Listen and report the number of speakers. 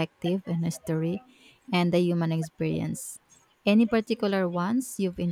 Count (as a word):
one